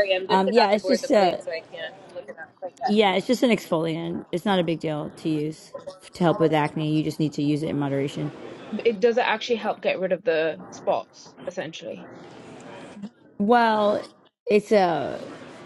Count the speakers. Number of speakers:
3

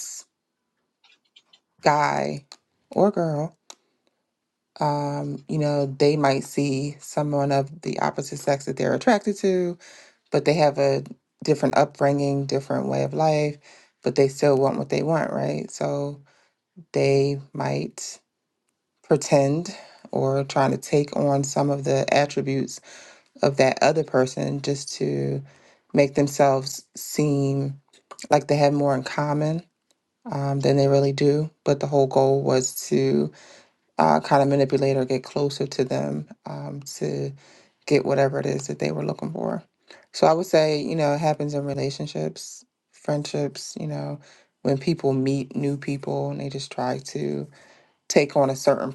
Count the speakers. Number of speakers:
1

